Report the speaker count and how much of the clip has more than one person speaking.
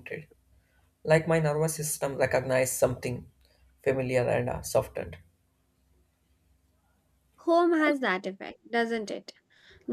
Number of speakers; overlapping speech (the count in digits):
2, no overlap